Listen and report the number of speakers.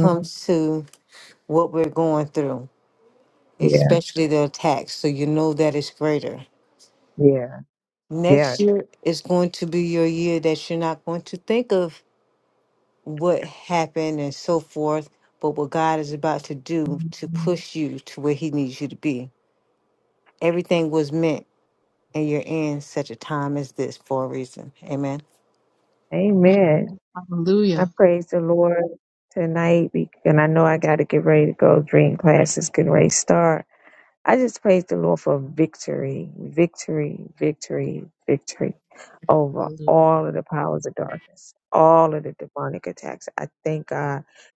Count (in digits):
3